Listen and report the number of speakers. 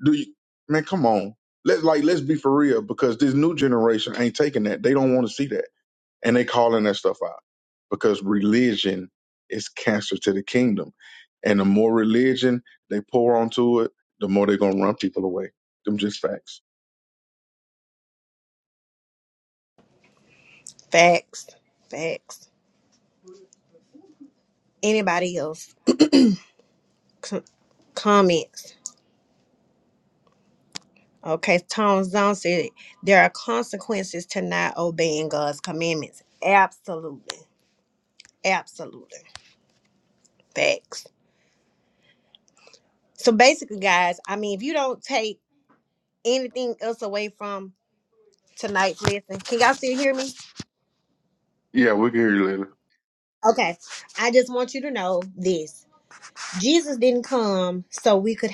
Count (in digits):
2